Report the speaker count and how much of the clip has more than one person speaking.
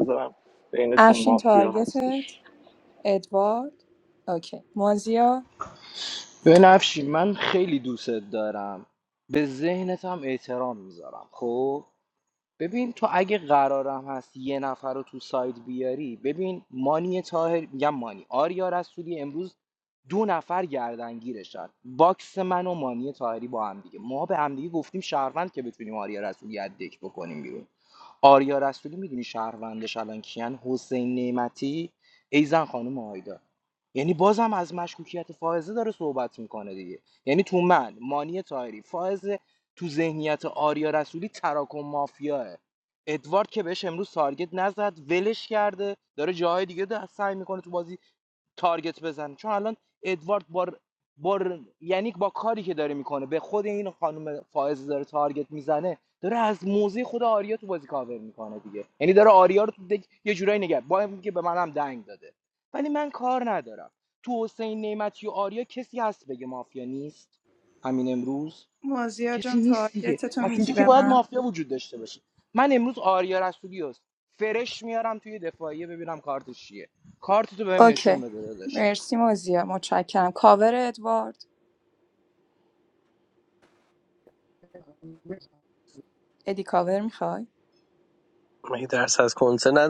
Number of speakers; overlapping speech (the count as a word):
four, about 4%